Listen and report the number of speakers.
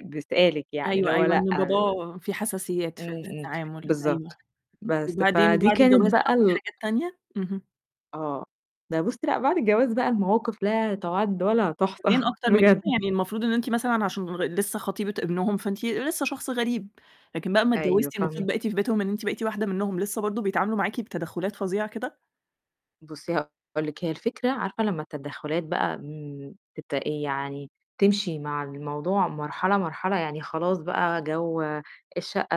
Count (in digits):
2